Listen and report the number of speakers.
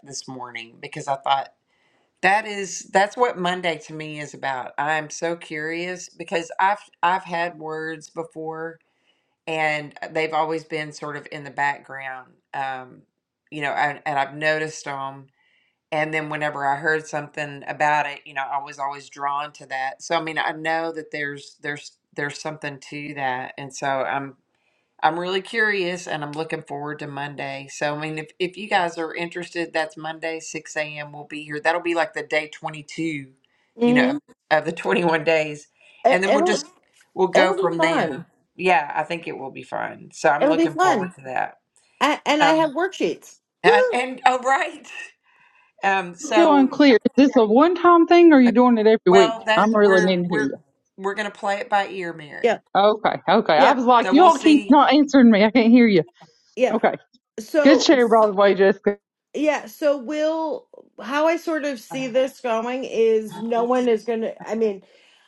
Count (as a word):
three